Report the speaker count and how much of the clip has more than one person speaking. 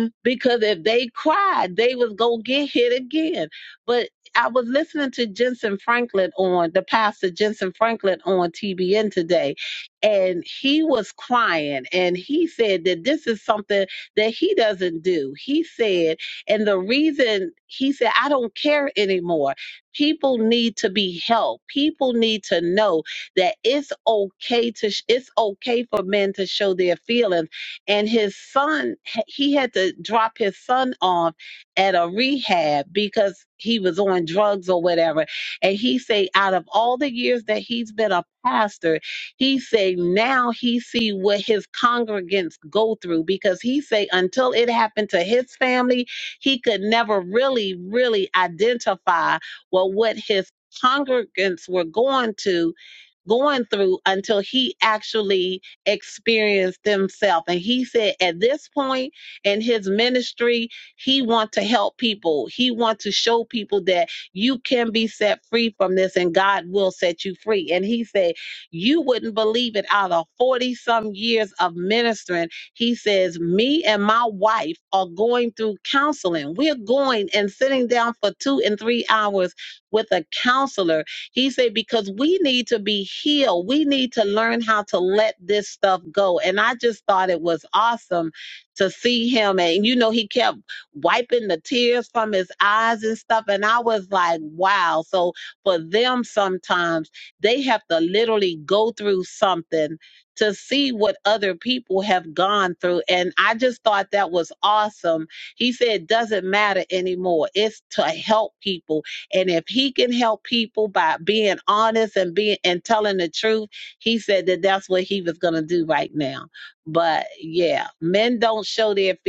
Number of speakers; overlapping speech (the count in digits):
1, no overlap